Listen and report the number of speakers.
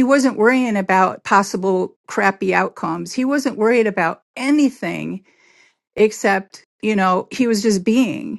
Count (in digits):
1